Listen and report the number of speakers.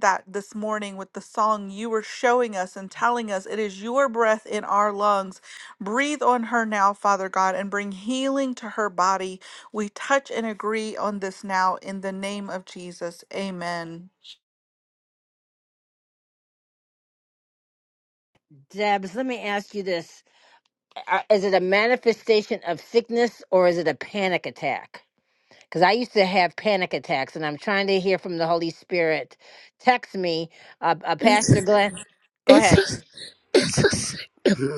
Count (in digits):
3